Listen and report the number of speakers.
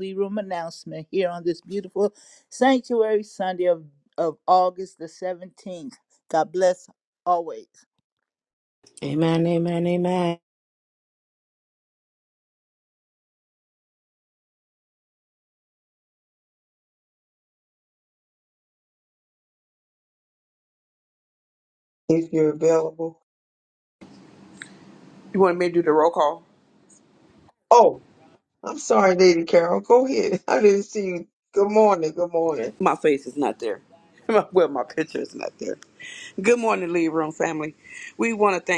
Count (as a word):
four